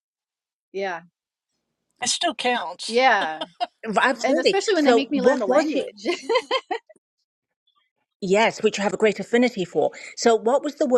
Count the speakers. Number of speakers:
three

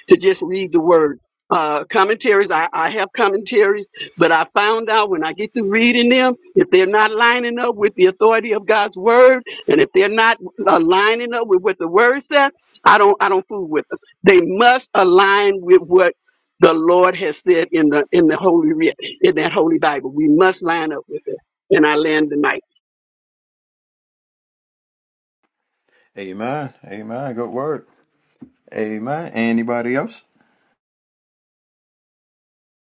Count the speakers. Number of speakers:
two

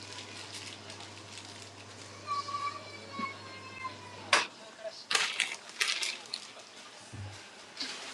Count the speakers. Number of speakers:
zero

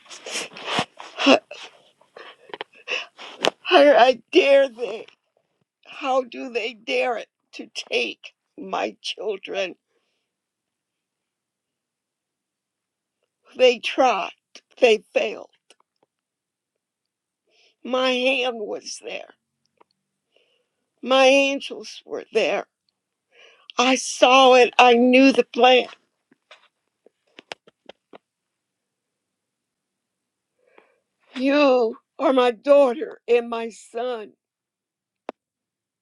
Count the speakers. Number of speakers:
one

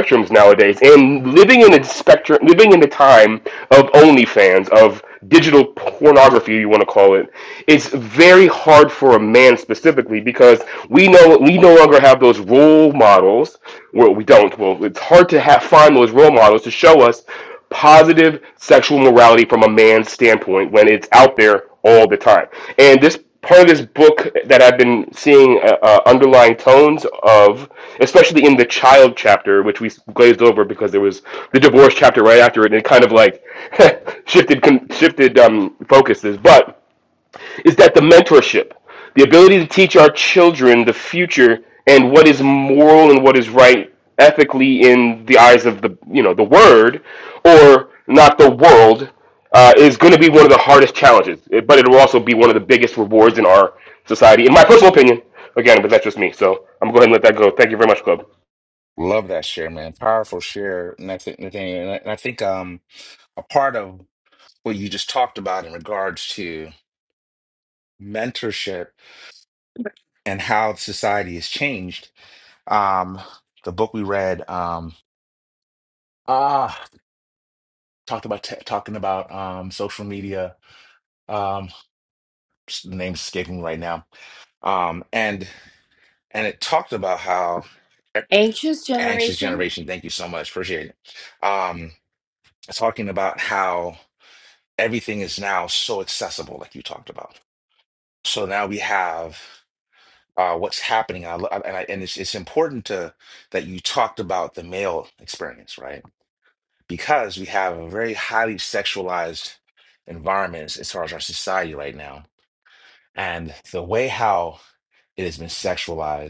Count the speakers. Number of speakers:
three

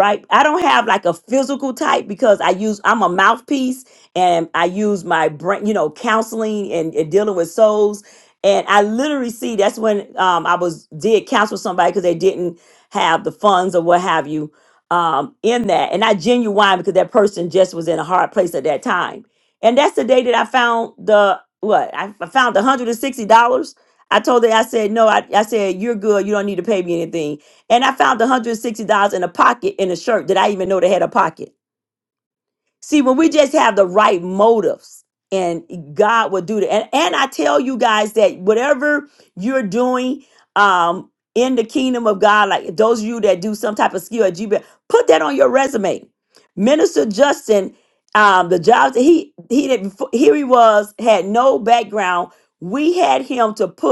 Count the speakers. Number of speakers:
one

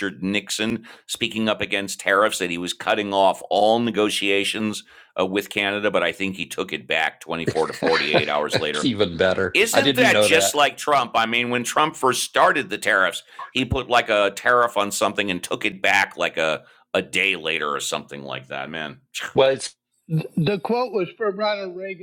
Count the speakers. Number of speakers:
three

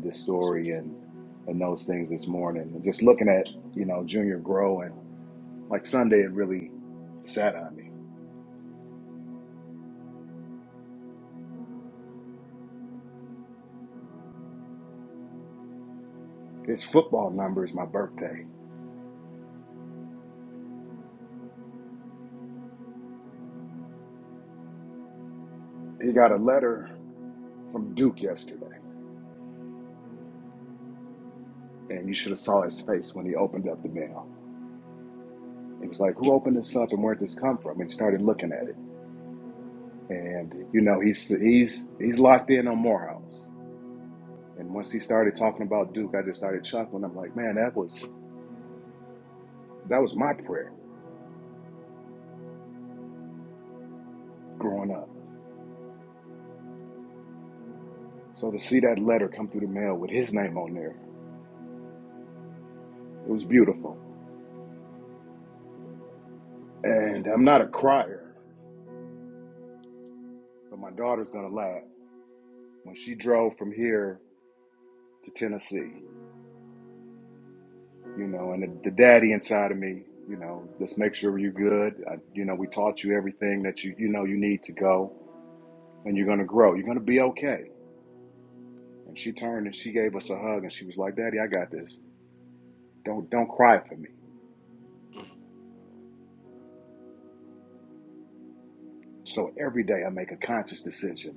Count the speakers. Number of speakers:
one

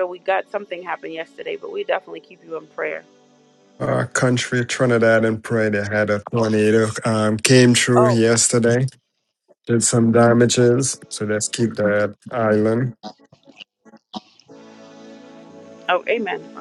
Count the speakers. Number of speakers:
two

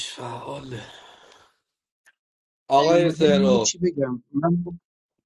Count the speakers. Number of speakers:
two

